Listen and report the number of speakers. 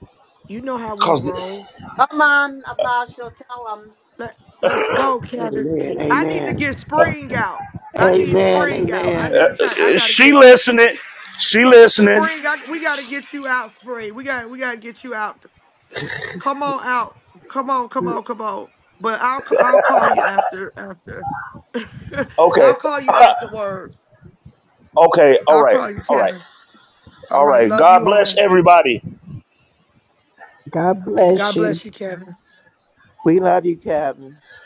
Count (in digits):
5